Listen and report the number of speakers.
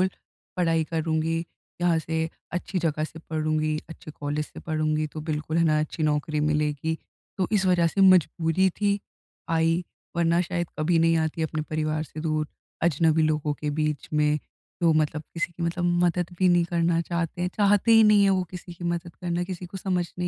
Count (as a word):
one